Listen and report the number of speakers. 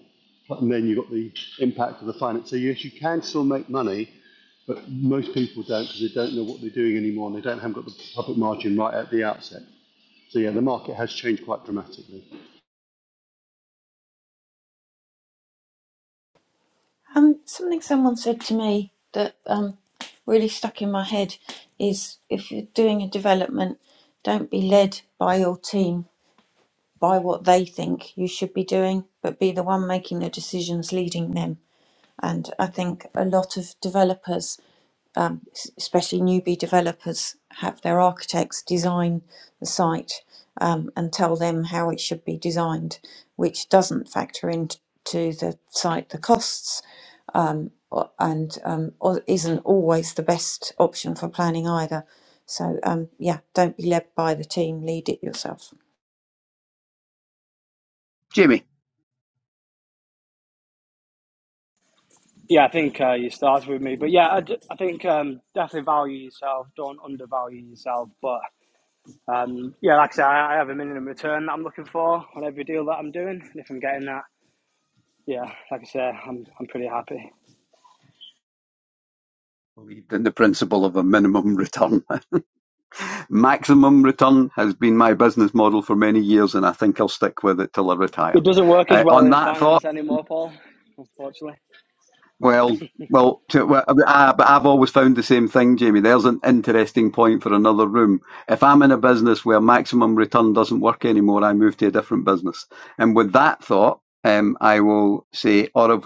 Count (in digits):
4